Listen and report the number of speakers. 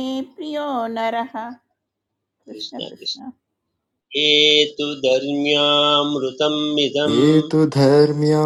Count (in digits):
3